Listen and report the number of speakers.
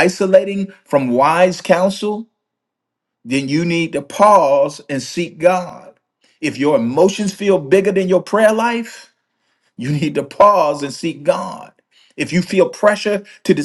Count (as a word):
one